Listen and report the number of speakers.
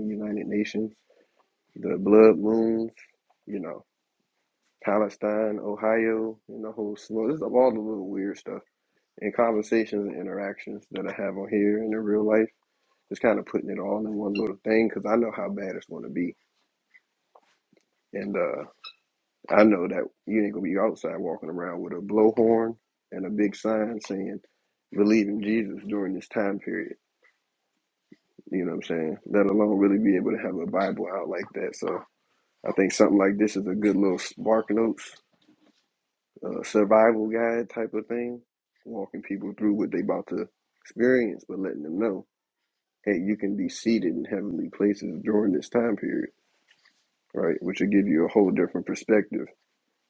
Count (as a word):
one